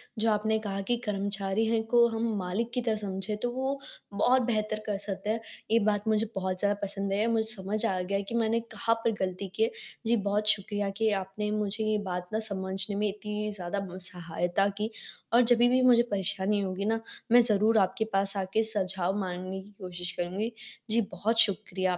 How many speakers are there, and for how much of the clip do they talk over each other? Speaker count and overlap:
one, no overlap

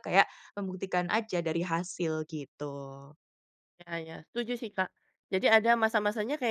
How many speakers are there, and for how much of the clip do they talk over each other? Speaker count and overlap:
two, no overlap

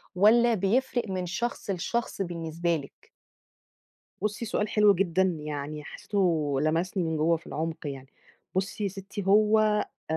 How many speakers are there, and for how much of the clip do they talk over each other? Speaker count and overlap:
two, no overlap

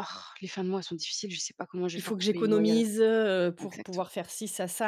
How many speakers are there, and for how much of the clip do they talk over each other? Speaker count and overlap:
two, about 26%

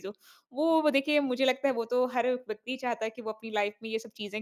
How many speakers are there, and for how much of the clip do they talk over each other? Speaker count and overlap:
one, no overlap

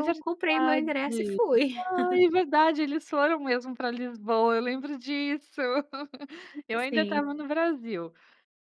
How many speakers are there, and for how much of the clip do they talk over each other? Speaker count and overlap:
two, about 14%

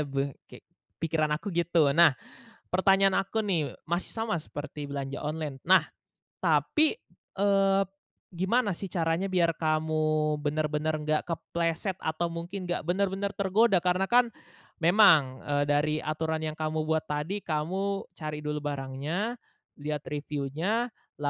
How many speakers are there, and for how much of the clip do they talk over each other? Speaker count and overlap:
one, no overlap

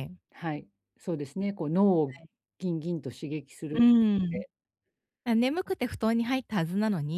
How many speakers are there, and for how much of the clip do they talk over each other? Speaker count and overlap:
two, about 4%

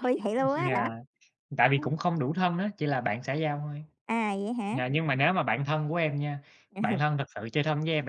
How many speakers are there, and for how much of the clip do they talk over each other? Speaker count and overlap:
two, about 6%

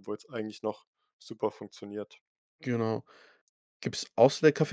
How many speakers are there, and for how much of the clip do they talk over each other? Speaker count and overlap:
two, no overlap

